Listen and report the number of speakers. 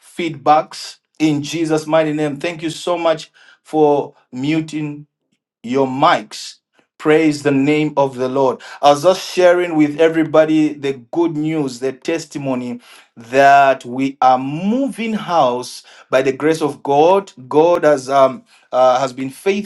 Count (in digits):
1